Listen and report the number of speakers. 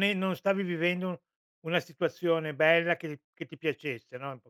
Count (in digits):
1